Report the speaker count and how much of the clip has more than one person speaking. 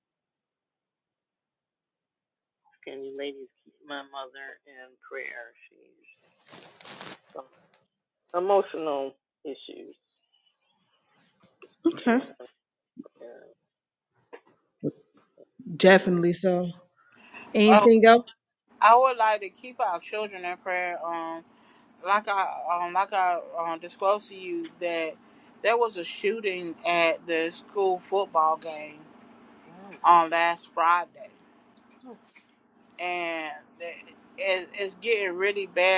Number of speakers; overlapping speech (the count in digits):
3, about 3%